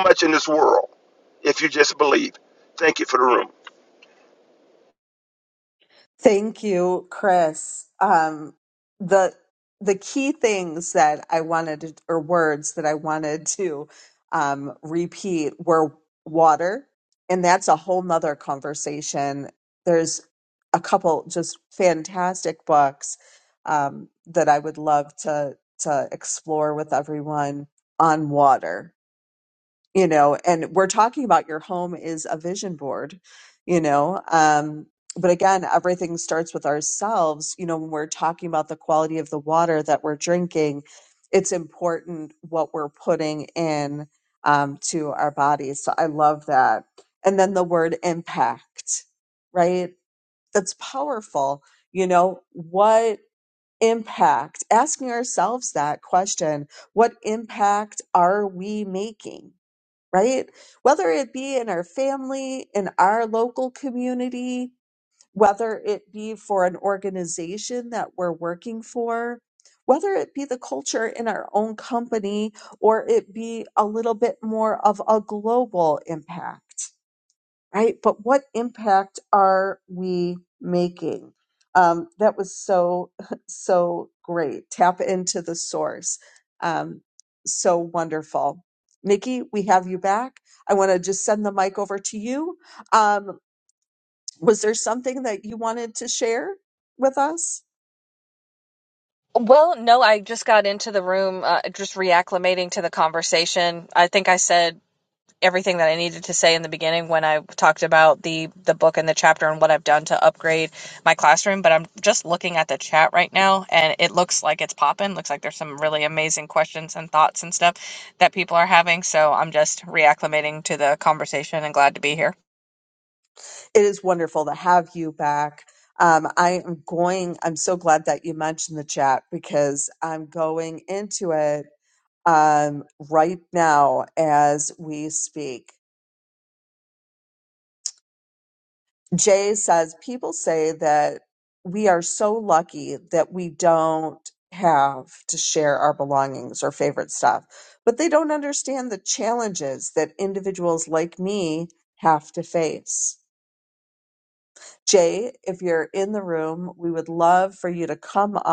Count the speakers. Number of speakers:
3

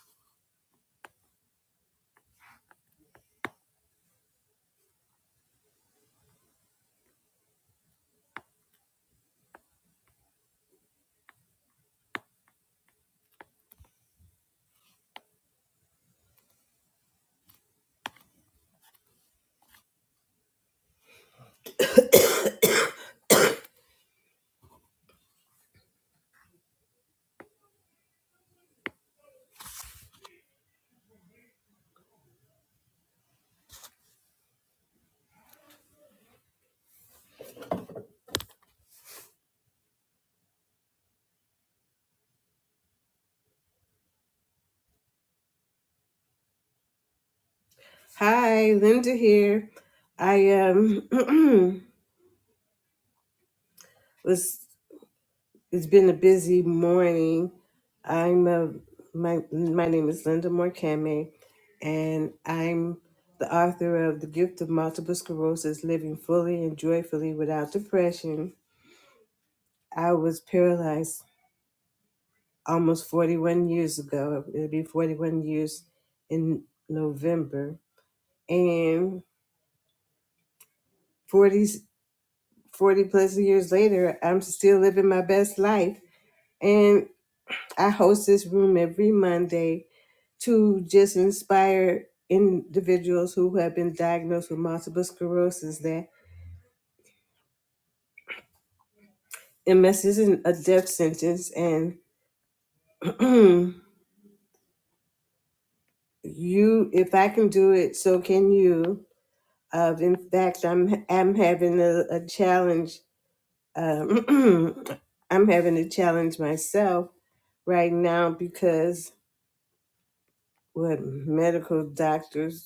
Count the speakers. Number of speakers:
1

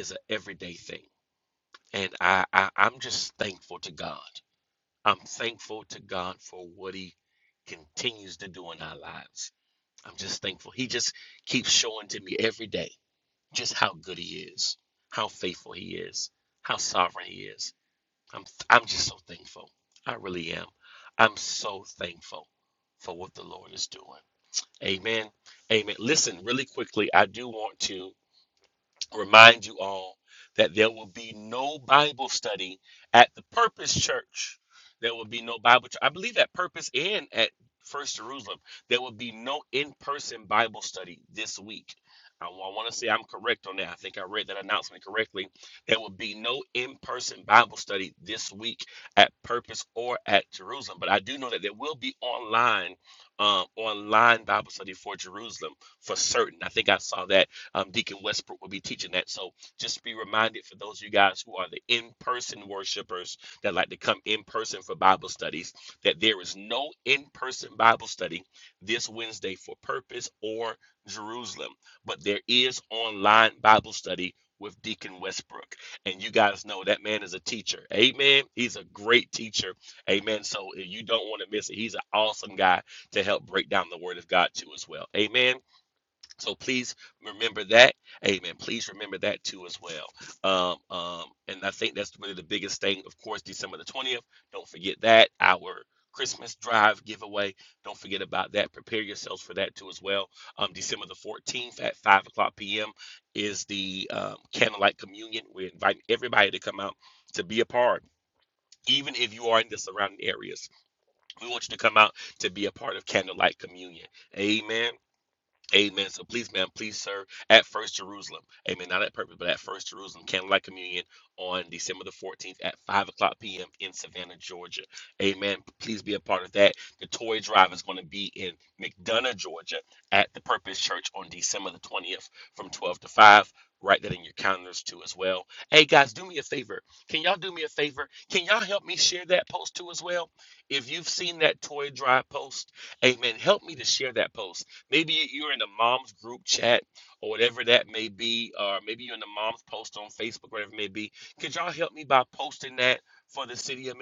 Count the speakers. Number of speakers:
1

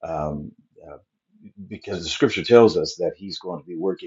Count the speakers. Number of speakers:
1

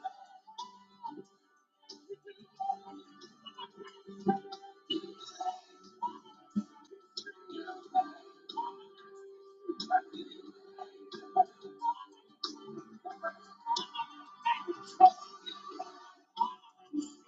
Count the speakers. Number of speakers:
0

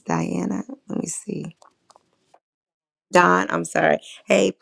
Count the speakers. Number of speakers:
1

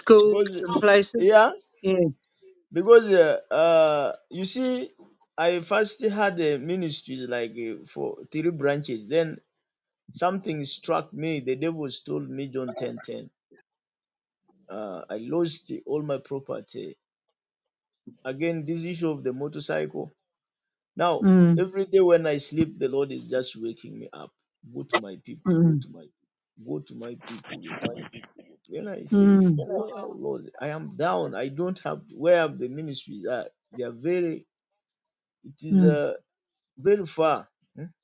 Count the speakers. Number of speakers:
2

